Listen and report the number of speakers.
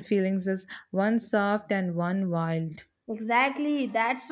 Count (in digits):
2